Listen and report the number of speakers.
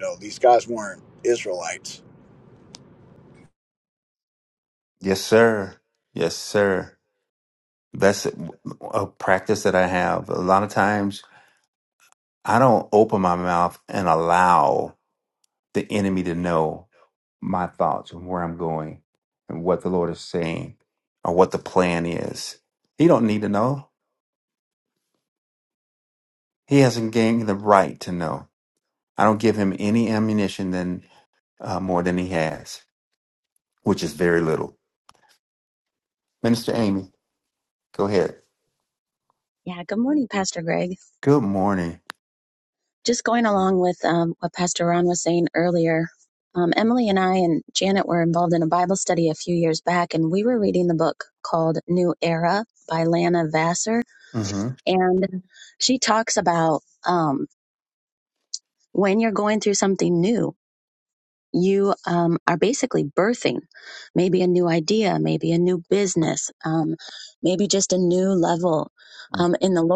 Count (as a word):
three